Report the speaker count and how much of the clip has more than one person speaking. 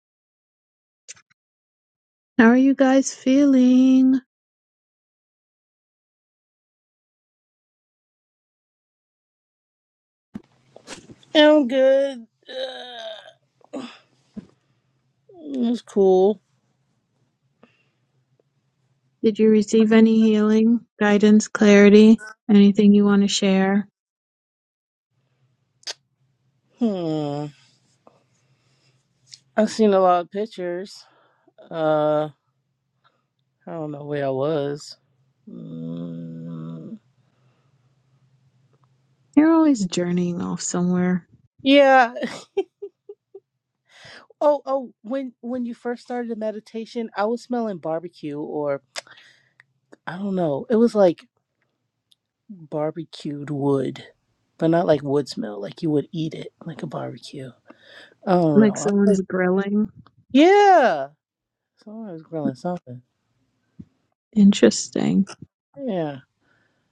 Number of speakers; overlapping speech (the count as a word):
two, about 1%